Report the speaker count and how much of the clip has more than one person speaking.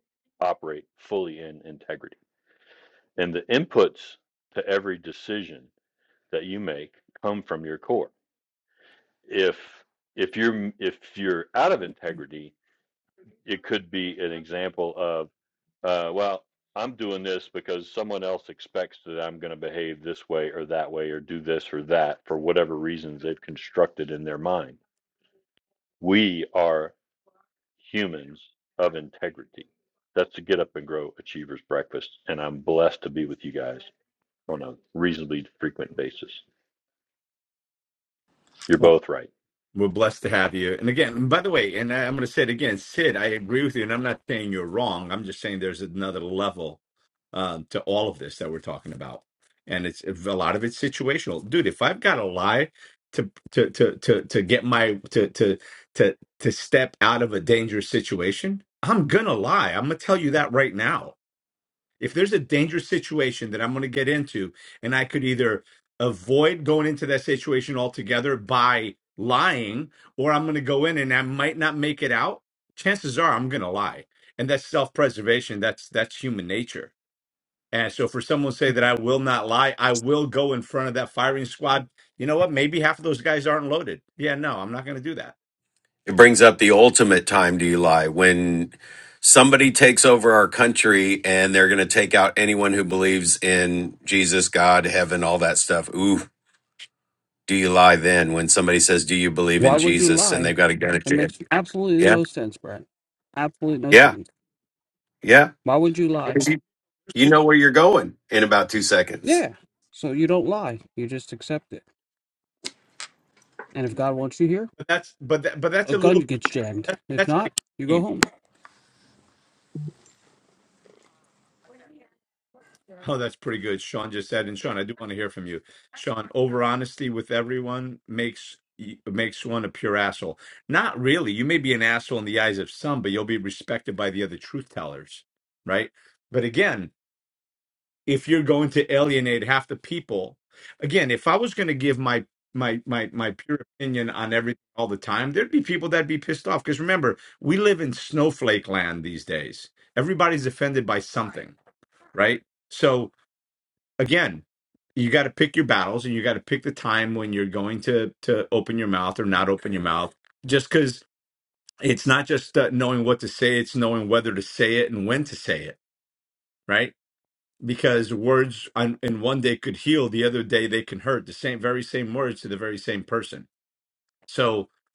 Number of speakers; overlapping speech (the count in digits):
4, about 2%